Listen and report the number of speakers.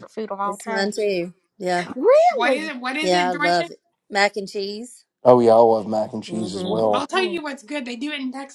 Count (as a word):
four